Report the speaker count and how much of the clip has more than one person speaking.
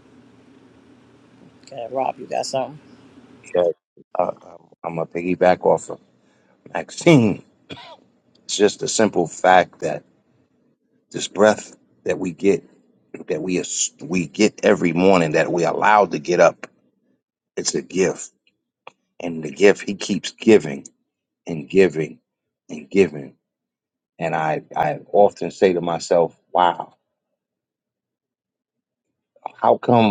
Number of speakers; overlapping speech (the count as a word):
two, no overlap